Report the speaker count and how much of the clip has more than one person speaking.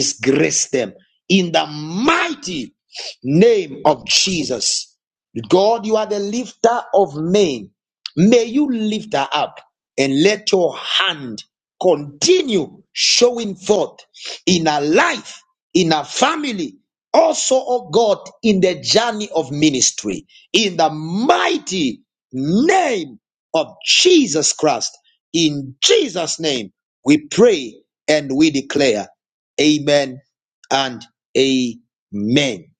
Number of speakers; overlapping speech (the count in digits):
1, no overlap